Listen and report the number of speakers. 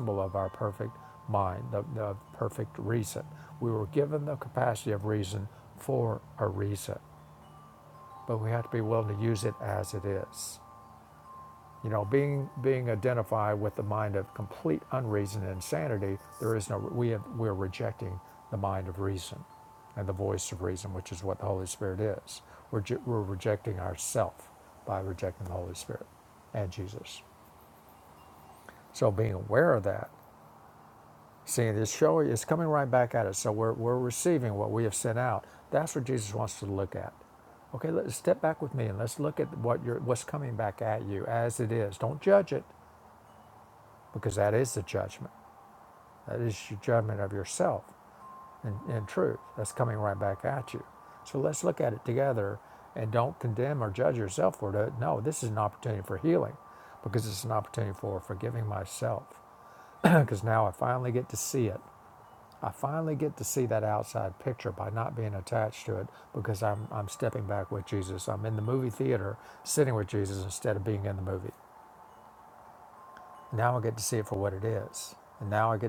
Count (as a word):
one